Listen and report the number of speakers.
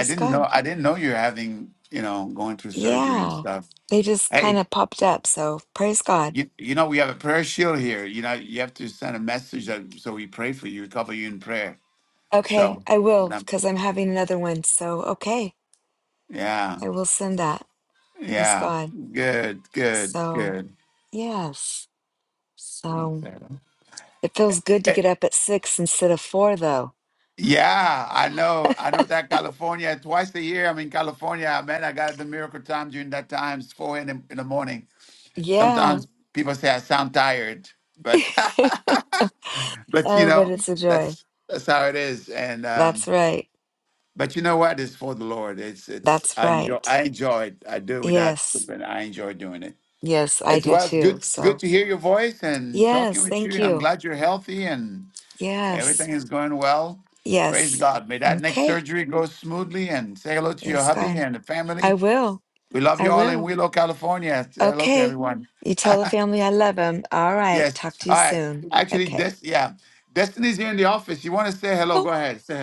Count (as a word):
two